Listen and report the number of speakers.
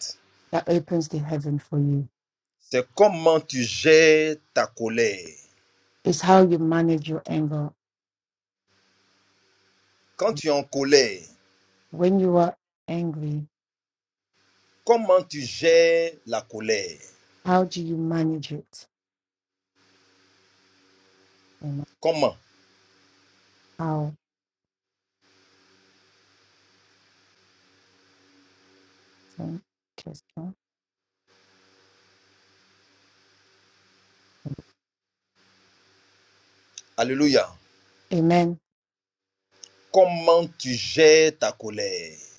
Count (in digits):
2